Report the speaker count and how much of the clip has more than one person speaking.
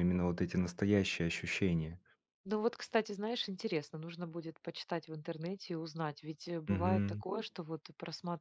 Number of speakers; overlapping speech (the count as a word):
two, about 6%